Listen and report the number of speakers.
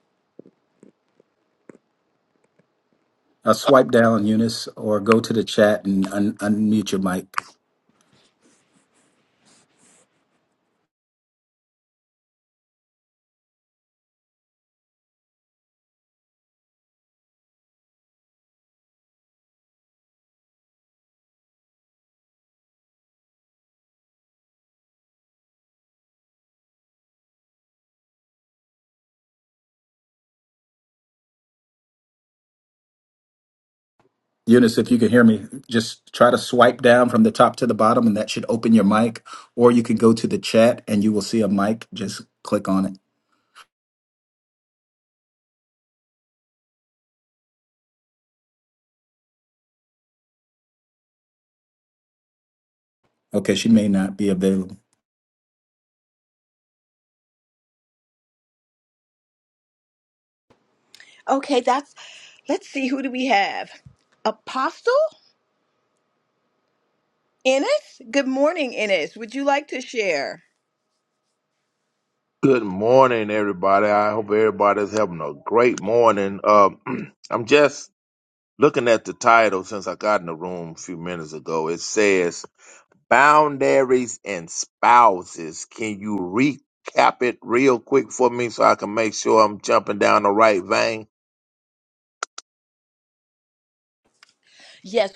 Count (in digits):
3